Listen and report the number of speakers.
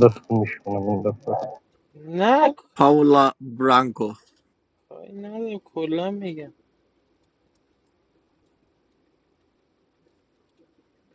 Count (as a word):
three